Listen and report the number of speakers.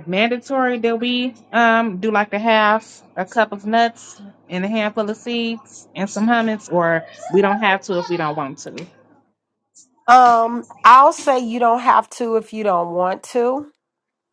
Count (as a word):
two